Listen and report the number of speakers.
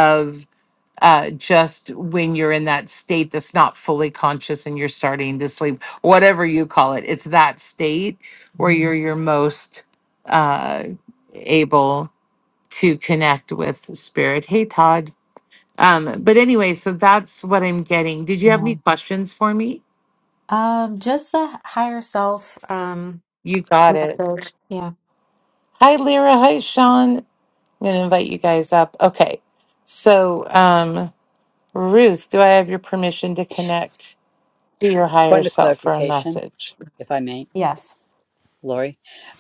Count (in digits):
3